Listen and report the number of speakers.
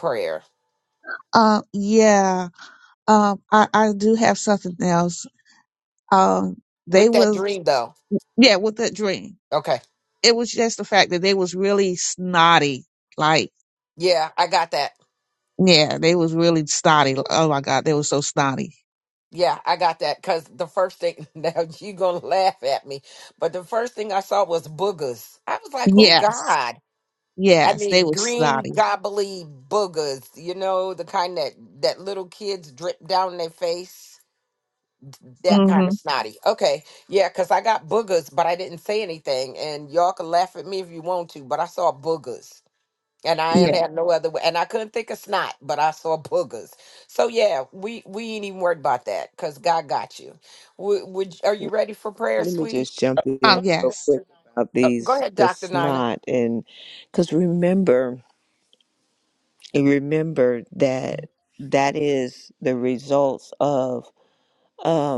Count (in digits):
3